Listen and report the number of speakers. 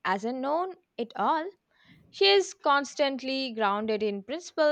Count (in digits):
1